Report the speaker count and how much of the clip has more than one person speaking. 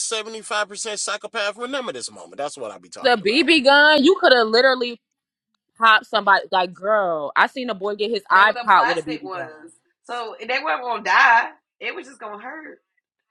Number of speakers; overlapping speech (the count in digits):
3, about 12%